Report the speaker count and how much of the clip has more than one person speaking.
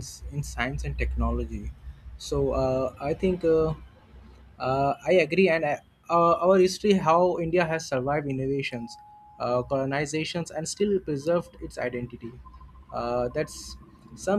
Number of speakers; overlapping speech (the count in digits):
1, no overlap